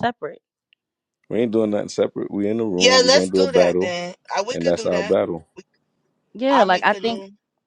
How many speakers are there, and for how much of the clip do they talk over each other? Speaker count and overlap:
three, about 32%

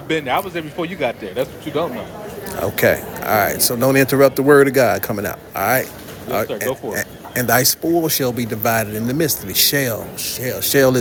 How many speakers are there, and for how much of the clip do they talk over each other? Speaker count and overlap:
two, about 7%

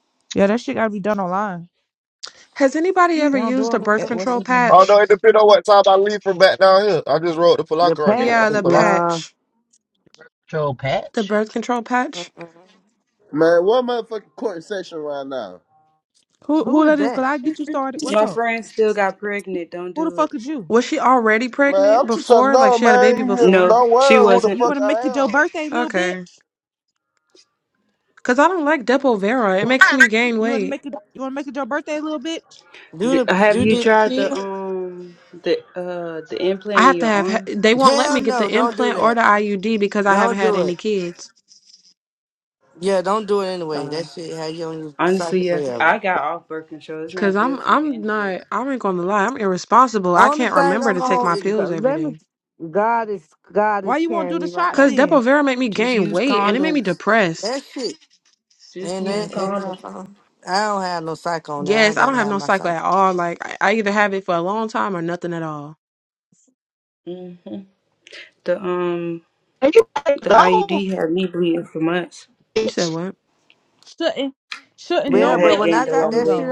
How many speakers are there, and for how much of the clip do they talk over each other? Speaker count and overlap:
seven, about 33%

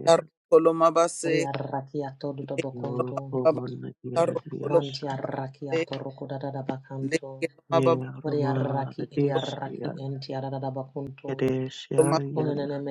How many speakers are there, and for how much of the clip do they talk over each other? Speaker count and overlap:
three, about 39%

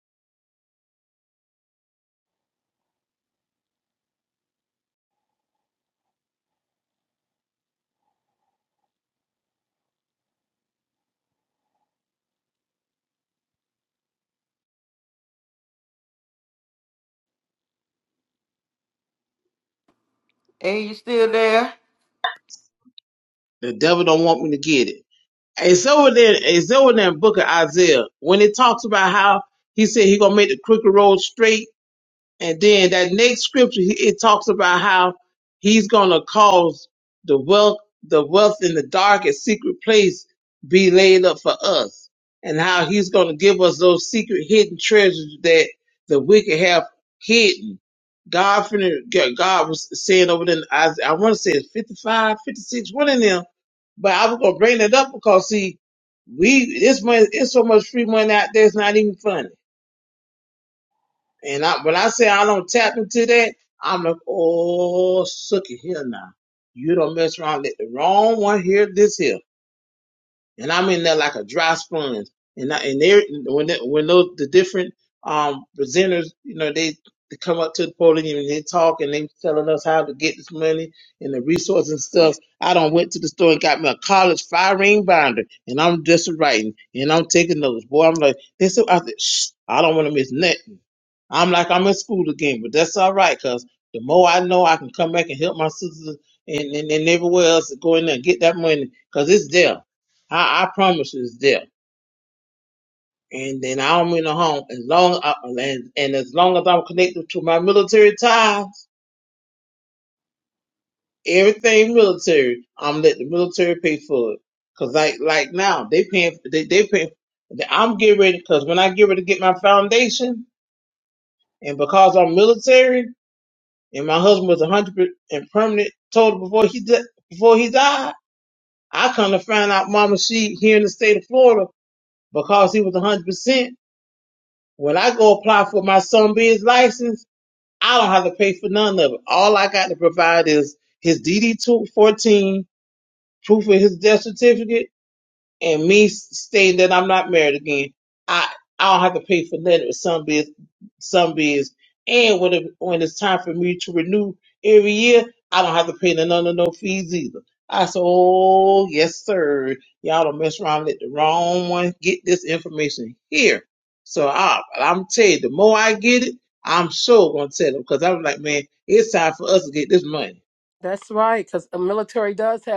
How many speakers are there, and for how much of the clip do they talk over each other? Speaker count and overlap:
three, no overlap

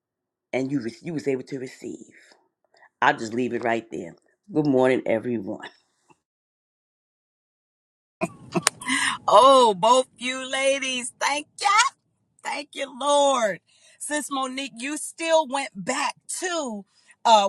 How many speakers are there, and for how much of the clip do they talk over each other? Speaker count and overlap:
two, no overlap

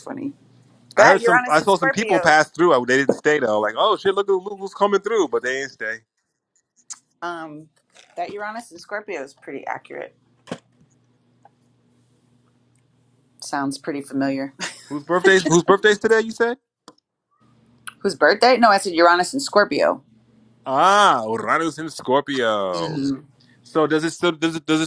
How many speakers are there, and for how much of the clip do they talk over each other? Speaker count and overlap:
two, about 6%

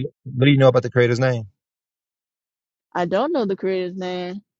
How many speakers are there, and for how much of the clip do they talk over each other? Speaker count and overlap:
two, no overlap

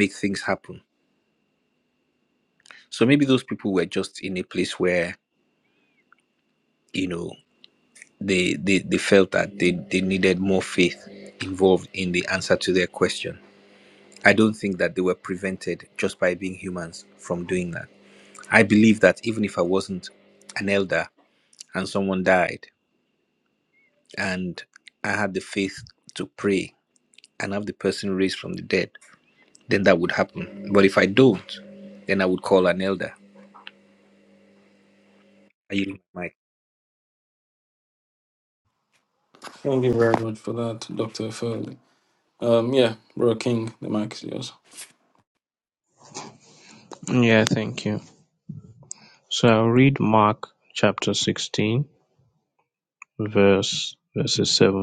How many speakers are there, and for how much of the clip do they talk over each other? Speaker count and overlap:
three, no overlap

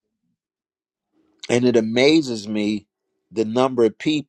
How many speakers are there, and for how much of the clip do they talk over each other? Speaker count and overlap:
one, no overlap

